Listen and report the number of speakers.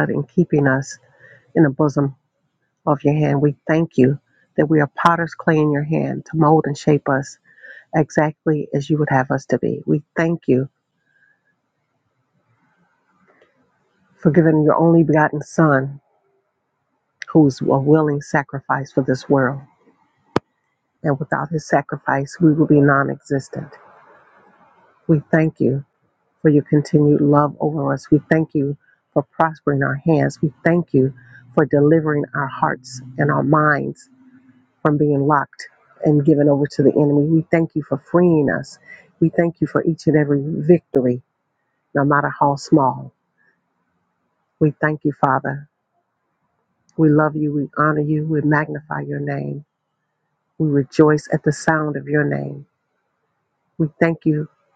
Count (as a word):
one